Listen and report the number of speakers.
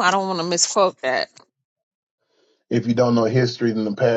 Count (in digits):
2